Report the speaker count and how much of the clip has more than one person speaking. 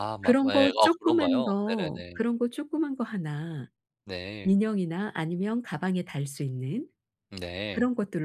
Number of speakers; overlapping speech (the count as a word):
two, about 26%